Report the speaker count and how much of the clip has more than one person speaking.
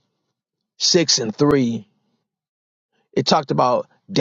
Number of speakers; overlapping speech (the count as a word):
one, no overlap